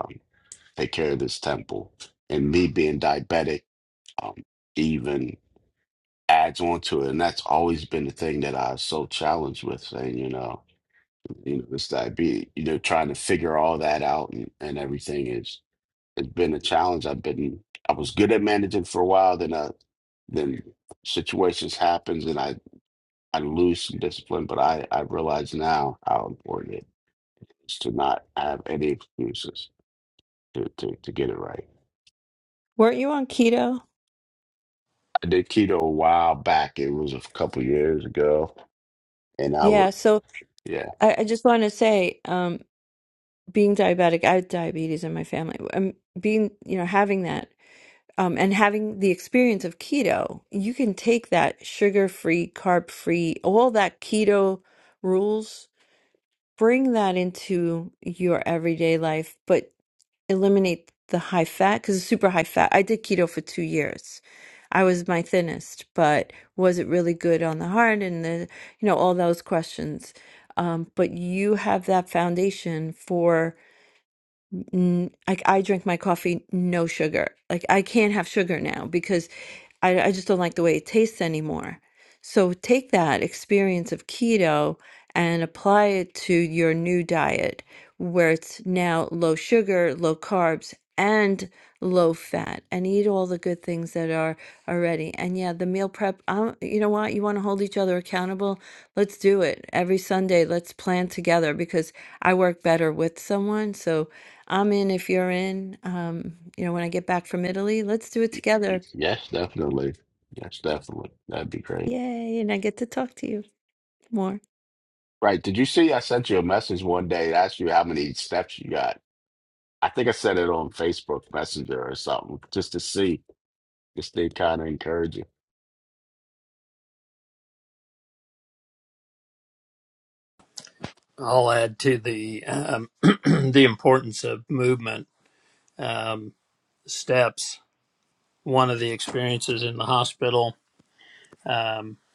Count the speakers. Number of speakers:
3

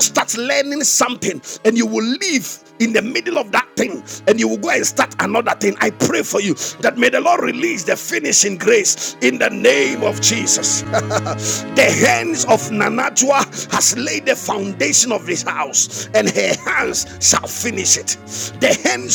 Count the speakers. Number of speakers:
1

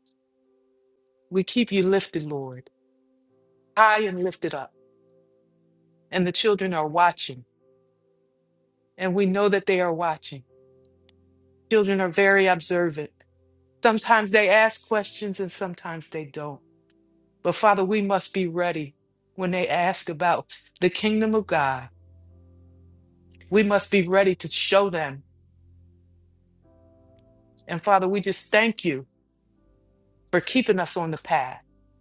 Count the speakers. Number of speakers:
1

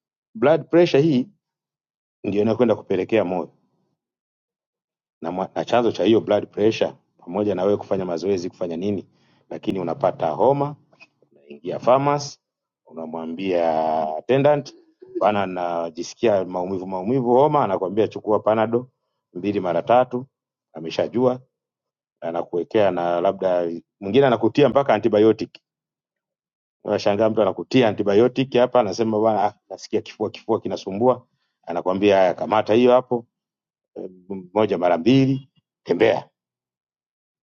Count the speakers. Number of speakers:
1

